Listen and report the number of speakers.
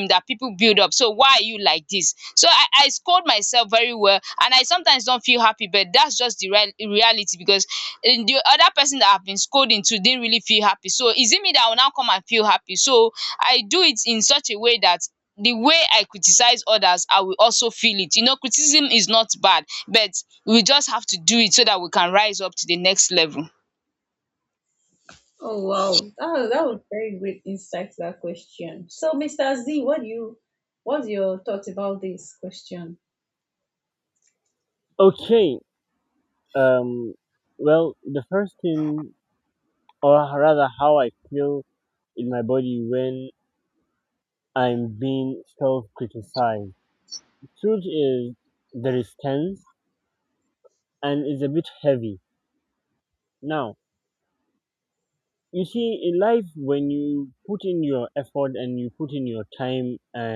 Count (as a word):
three